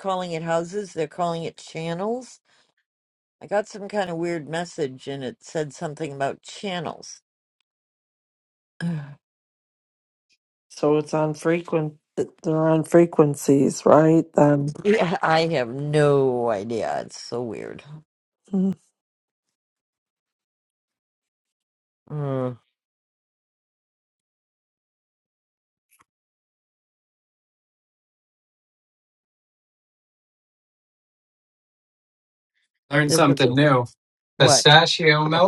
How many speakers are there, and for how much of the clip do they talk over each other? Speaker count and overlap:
3, about 2%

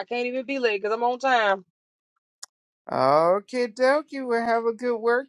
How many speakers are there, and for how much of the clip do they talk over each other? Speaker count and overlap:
2, no overlap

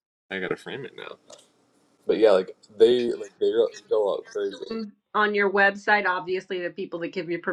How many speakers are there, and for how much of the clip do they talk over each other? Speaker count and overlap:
2, no overlap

